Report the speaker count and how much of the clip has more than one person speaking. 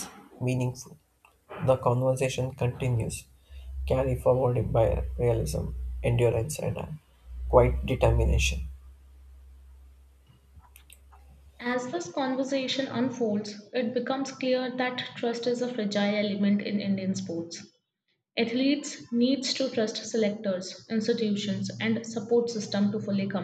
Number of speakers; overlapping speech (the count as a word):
two, no overlap